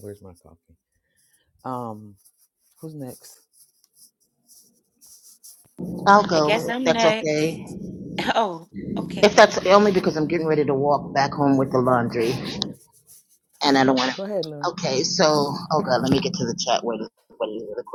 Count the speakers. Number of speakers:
three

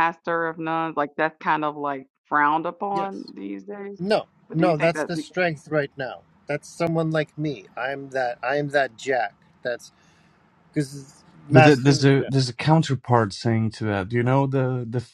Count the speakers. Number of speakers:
three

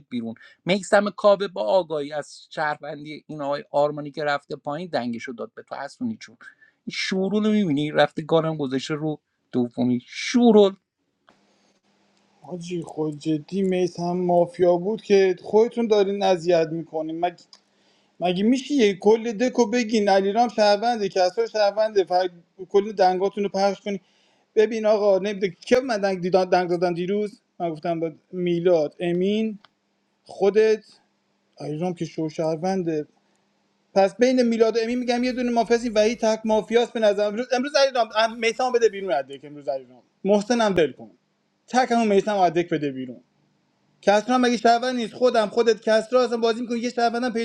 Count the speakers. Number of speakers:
two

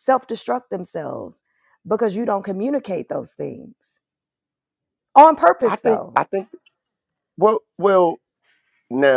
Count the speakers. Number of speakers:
two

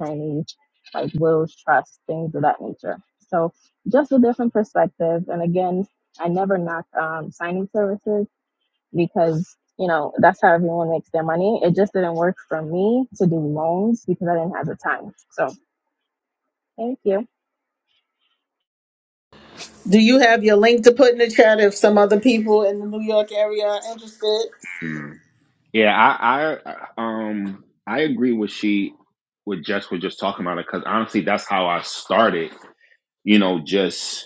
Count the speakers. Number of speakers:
three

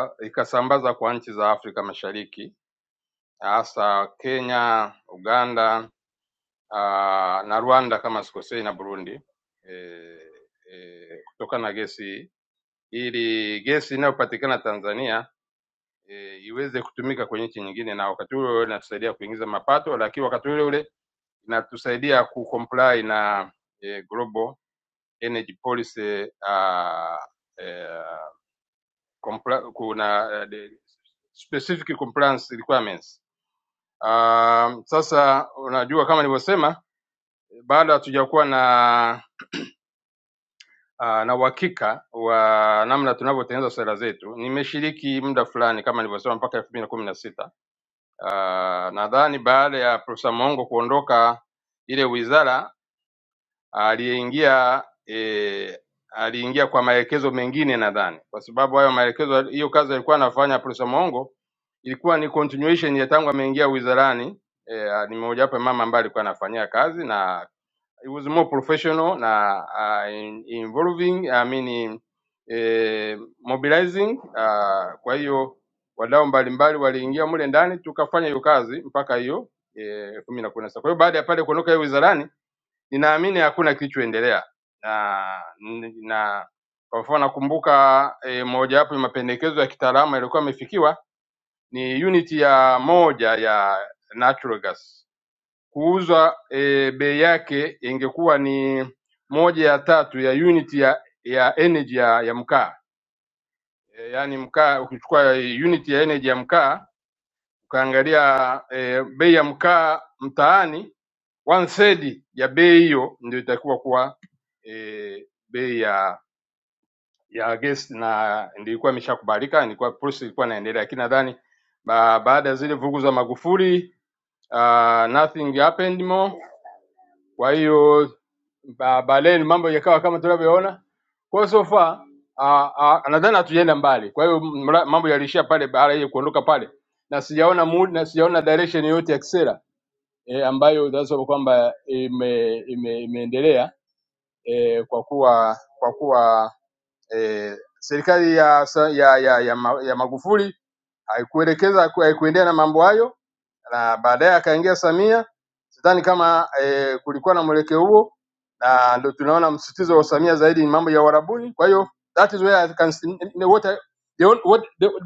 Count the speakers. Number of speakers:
one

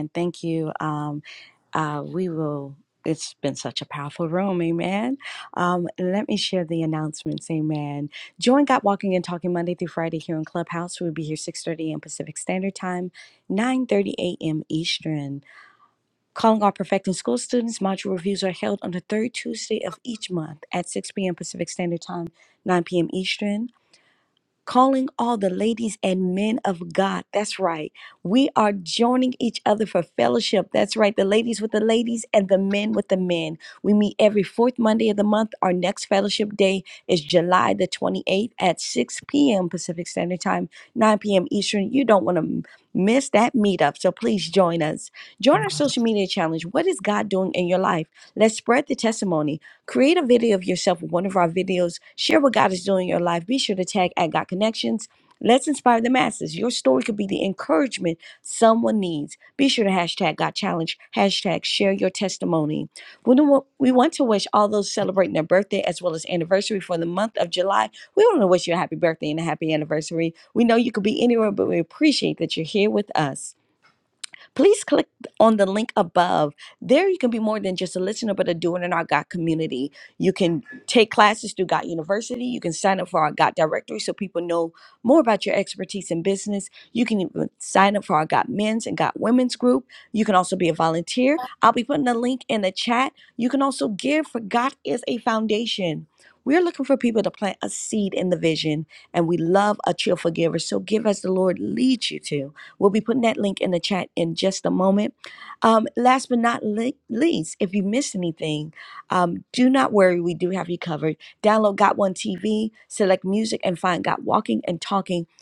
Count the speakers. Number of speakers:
one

